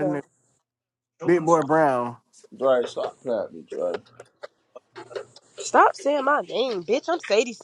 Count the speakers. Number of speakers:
3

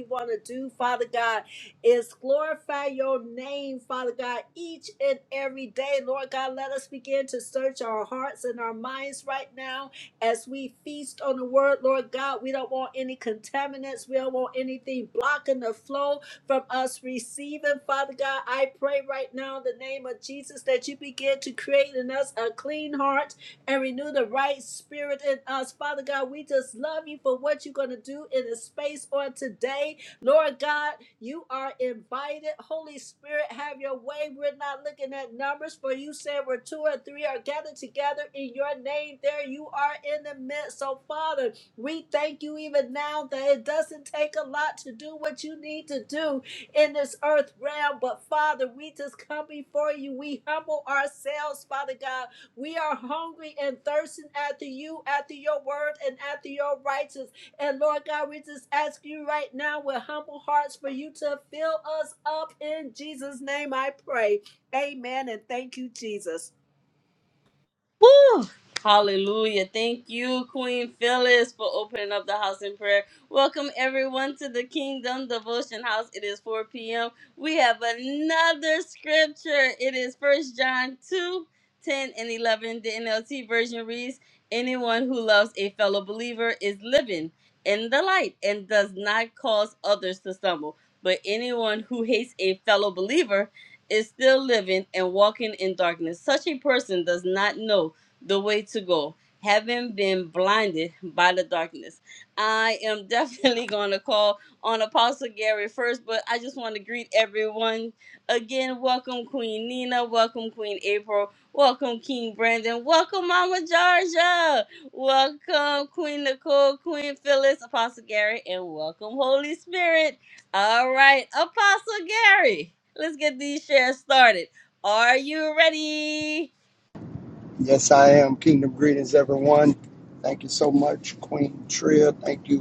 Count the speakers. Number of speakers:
3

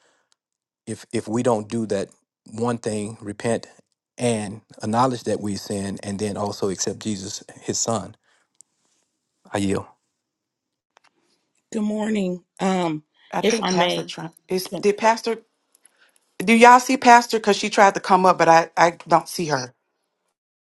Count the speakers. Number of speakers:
3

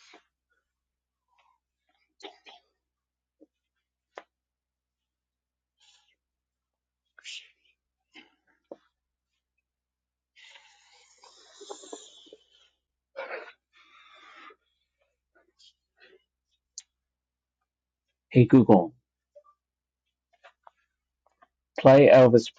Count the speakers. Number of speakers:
1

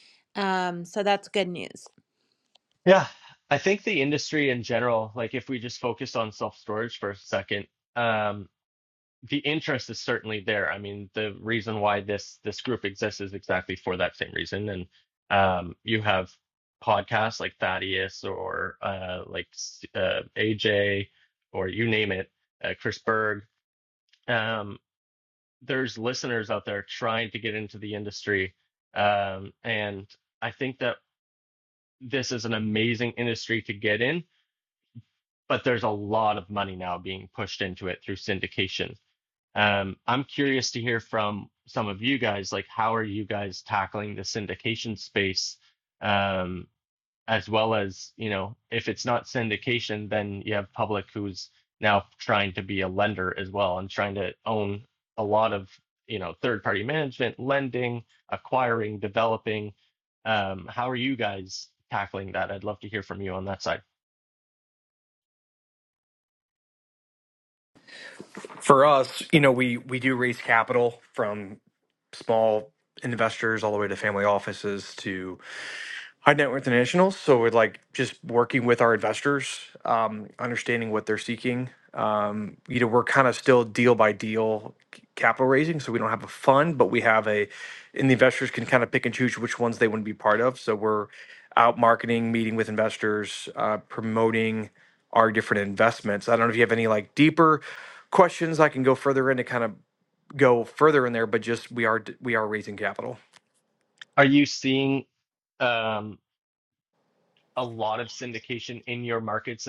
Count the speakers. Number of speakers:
3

